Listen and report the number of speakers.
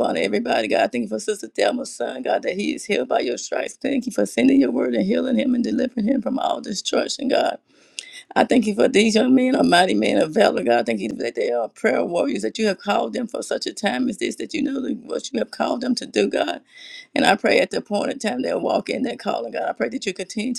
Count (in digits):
1